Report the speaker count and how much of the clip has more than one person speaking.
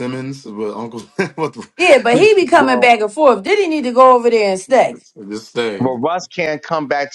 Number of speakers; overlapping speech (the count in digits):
3, about 6%